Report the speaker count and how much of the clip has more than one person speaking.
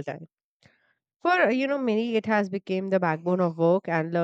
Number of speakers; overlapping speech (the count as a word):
one, no overlap